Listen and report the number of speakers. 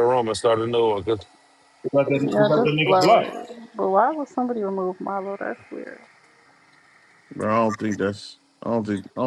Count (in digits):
4